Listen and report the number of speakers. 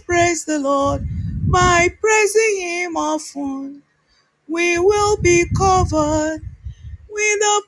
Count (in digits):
1